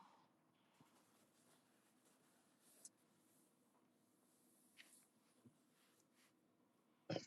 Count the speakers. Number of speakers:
zero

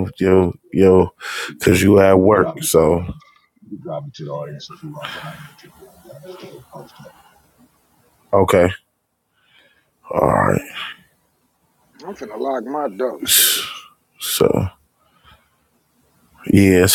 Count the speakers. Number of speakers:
three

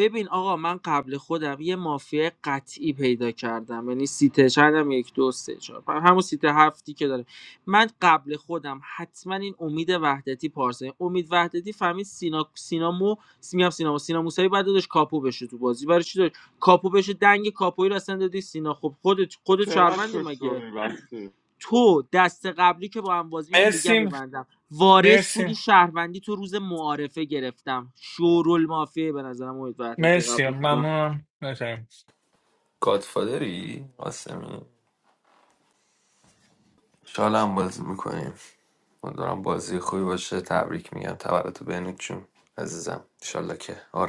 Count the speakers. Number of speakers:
four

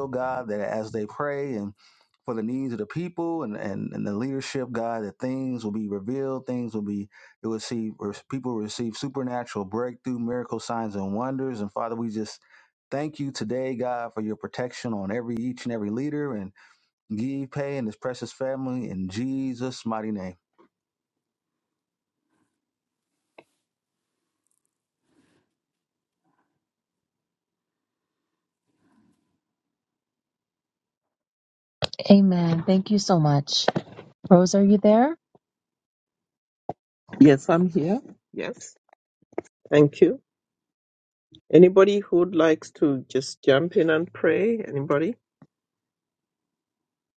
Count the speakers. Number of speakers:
three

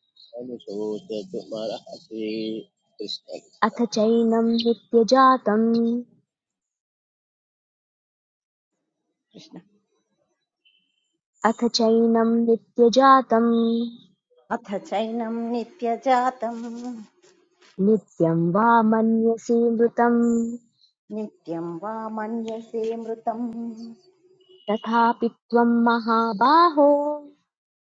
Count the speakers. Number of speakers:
three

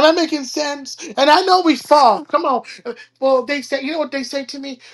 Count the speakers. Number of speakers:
one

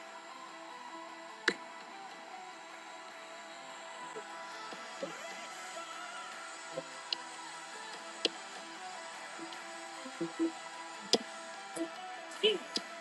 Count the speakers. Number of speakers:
zero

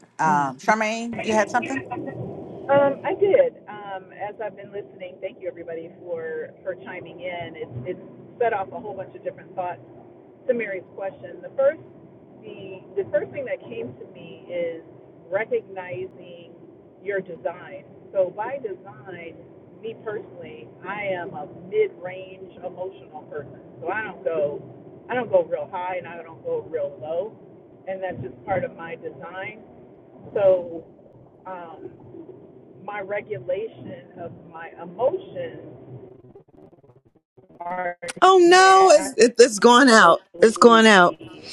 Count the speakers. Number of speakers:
three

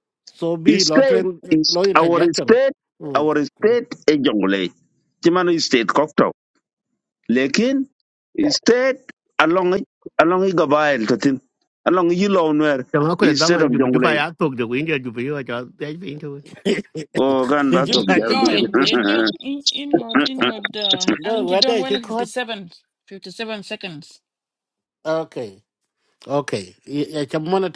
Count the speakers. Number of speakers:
four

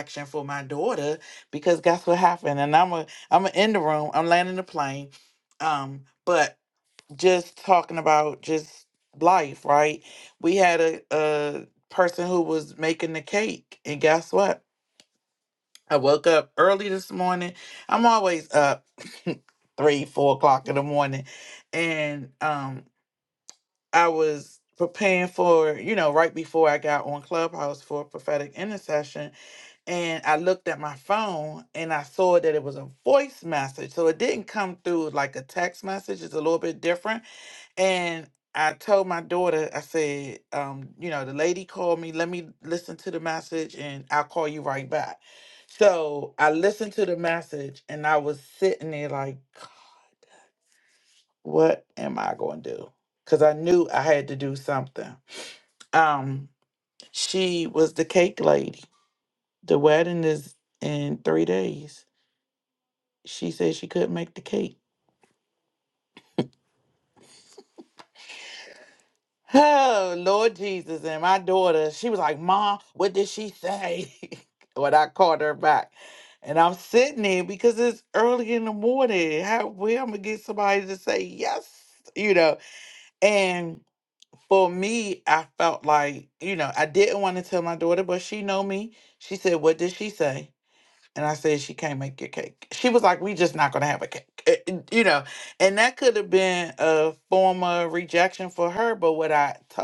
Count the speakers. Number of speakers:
one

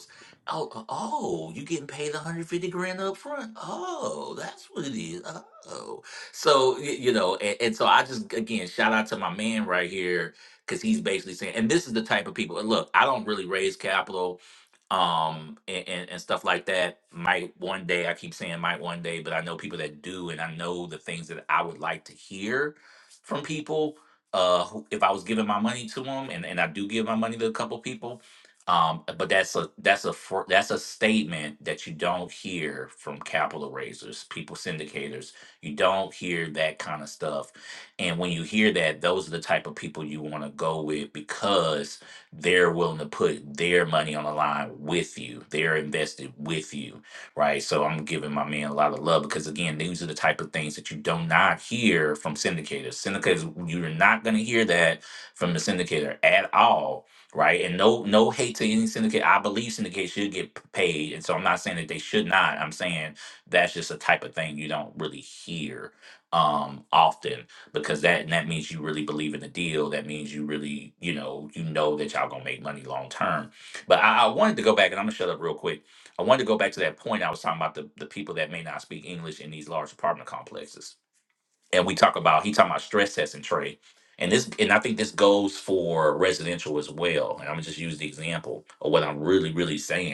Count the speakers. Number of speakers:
one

